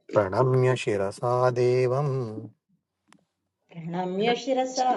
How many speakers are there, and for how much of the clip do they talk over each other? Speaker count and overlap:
two, no overlap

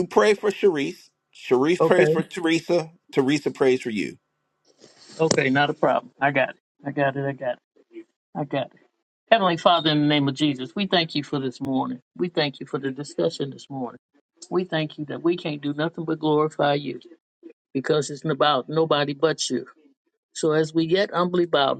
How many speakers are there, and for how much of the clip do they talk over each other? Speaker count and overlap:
two, about 2%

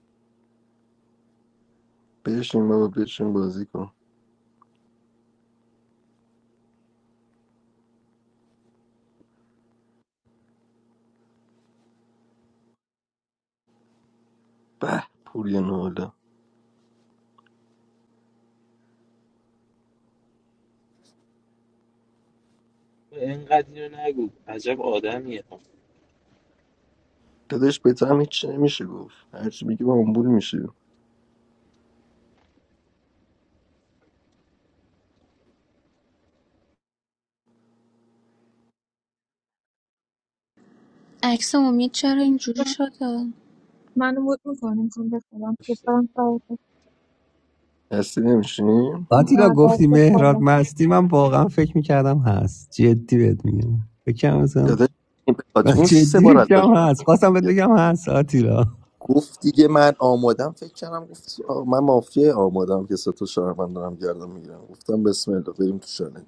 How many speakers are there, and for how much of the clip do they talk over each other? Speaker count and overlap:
five, about 2%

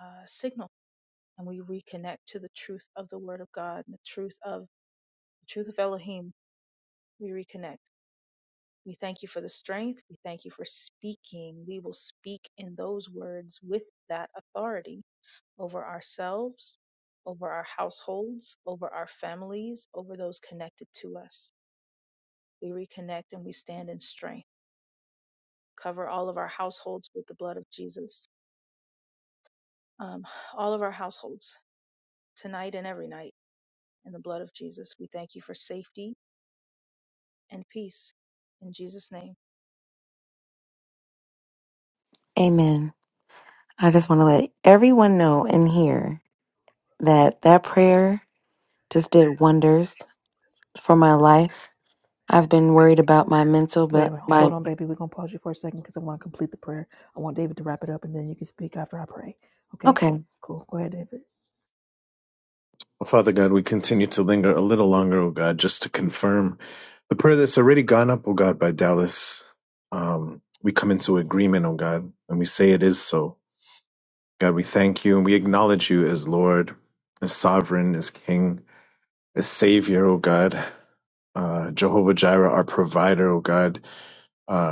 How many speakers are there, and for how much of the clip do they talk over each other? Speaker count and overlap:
four, about 1%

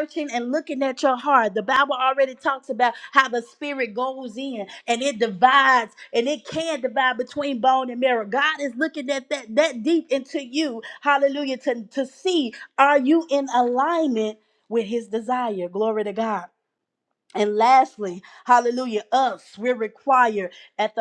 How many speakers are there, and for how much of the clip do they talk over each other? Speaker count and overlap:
one, no overlap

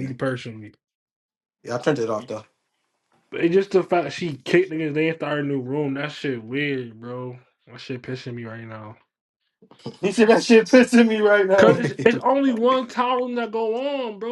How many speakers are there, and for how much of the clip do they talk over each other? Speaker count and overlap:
three, about 5%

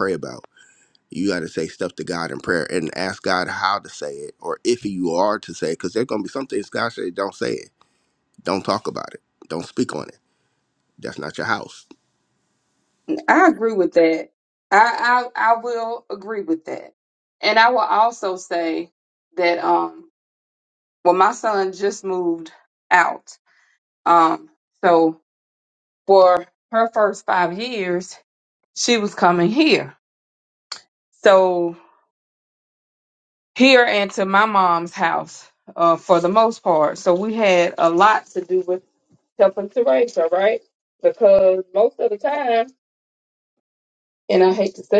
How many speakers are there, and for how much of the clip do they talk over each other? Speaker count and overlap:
two, no overlap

